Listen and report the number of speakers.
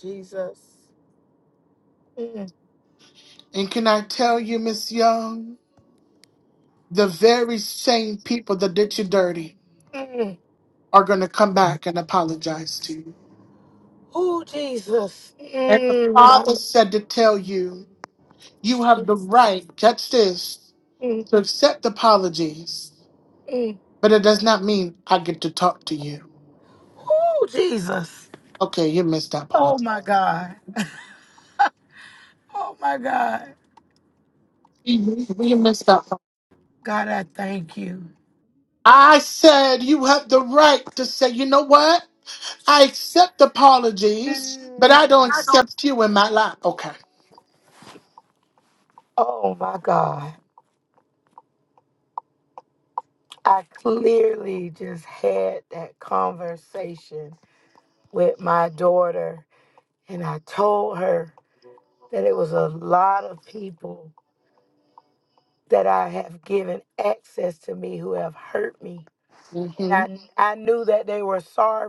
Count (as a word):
two